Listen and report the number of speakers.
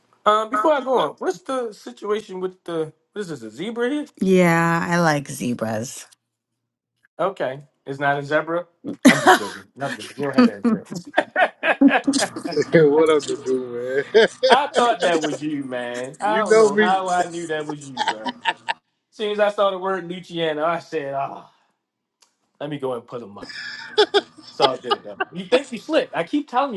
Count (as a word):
three